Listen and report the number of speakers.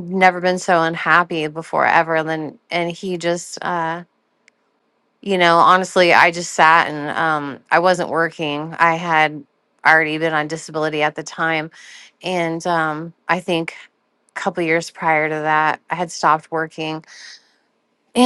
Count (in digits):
1